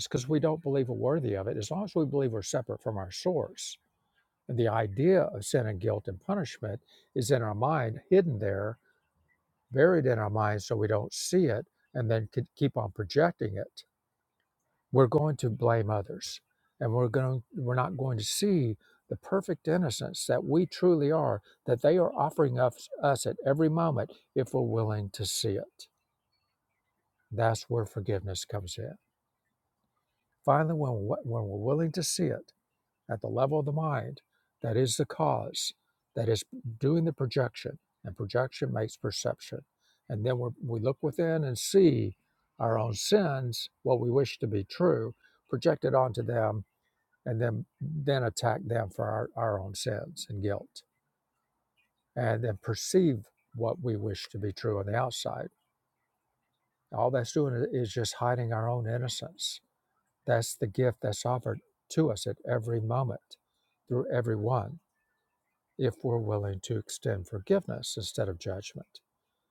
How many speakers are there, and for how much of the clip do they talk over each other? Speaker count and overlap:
one, no overlap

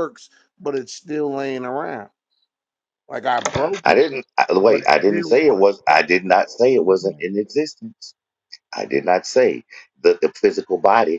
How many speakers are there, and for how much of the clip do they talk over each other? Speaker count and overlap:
two, about 13%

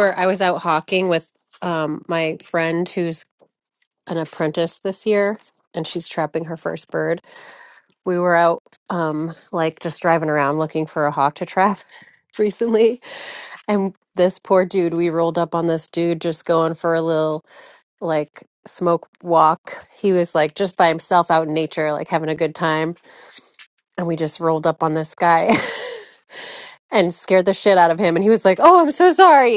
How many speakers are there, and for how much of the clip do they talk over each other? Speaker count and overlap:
one, no overlap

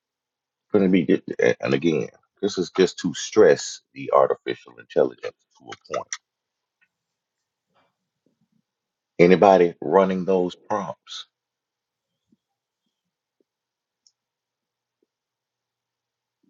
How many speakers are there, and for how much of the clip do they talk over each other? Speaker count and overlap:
one, no overlap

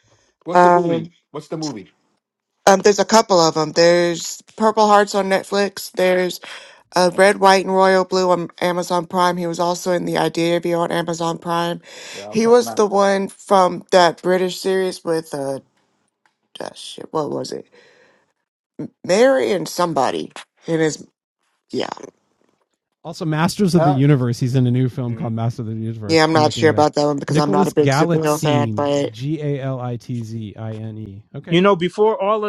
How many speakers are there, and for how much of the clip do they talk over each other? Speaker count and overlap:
four, about 12%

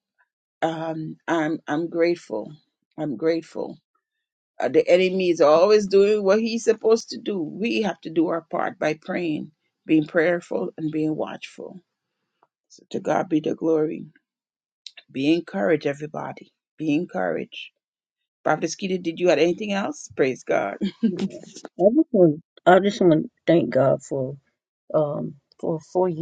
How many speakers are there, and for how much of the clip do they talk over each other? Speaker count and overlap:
two, no overlap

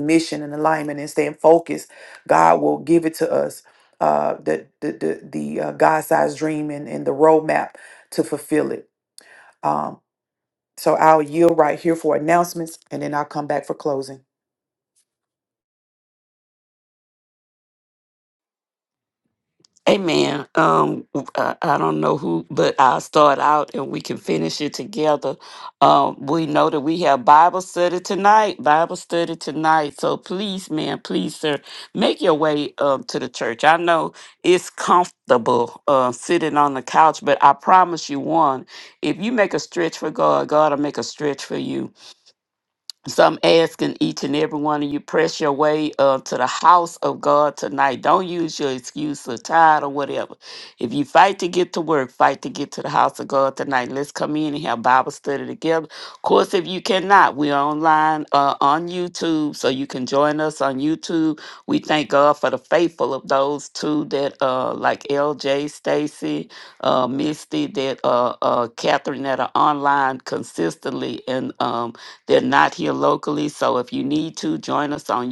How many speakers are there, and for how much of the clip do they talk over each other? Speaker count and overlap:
two, no overlap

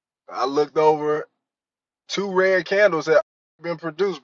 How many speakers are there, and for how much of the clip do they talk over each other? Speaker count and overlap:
one, no overlap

